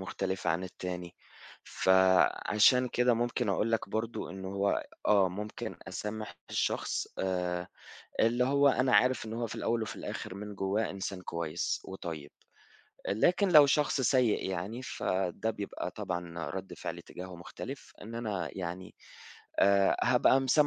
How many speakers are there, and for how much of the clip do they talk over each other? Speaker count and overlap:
one, no overlap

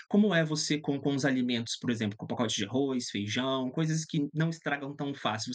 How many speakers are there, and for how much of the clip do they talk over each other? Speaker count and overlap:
one, no overlap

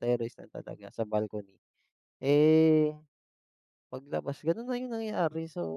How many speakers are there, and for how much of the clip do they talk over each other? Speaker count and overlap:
one, no overlap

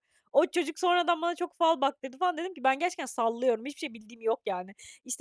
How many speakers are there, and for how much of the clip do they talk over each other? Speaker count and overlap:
one, no overlap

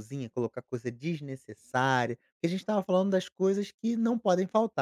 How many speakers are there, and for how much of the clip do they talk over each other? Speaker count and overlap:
one, no overlap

